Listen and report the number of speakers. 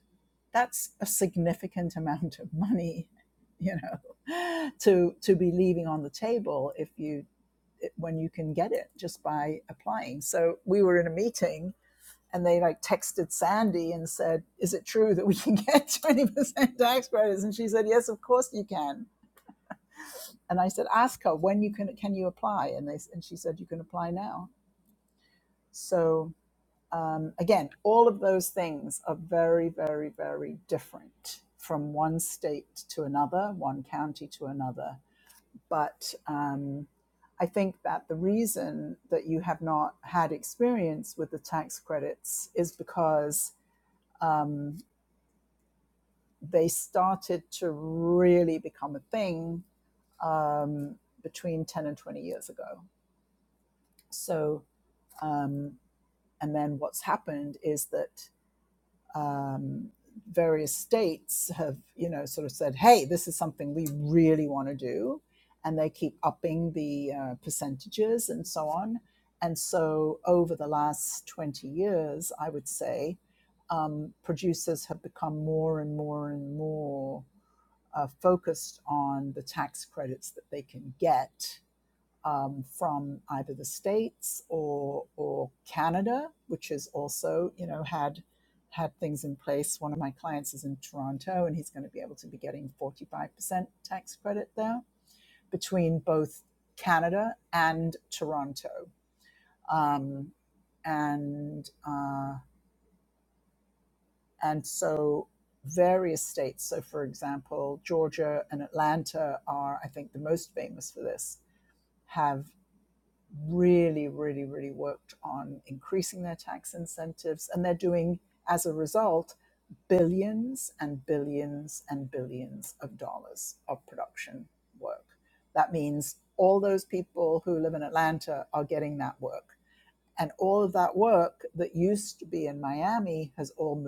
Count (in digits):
1